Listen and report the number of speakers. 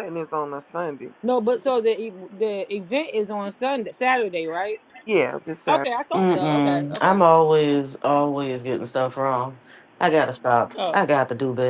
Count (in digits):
3